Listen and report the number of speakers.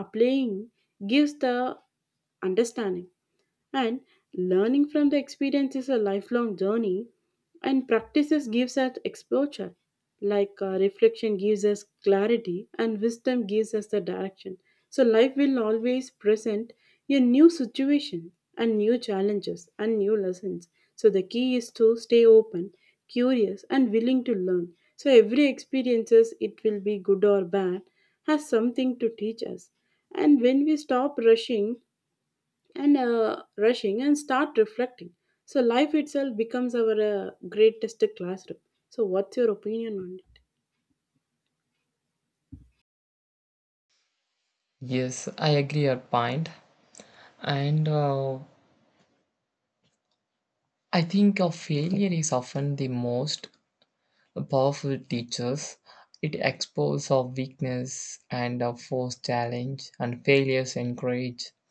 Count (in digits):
2